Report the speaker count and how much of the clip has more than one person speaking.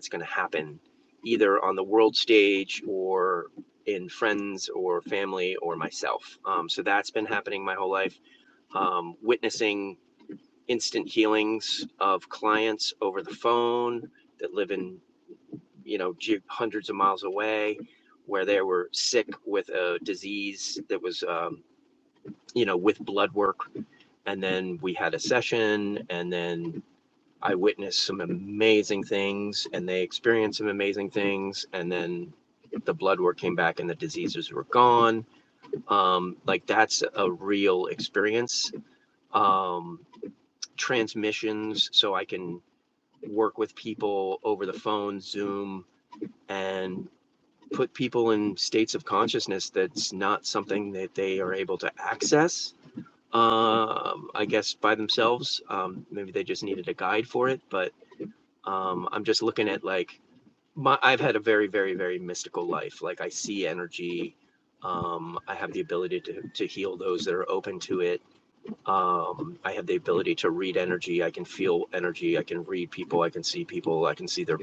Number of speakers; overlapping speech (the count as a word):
one, no overlap